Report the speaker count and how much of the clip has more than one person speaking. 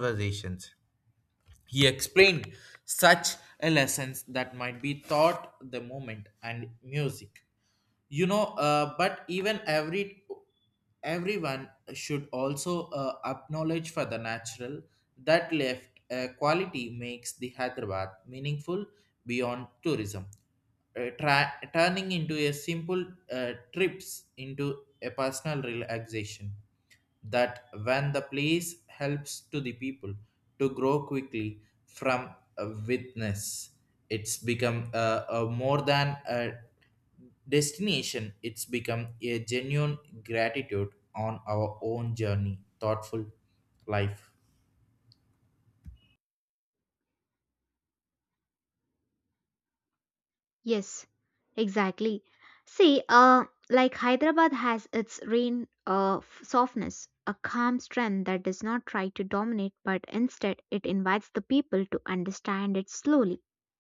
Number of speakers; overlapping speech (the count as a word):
two, no overlap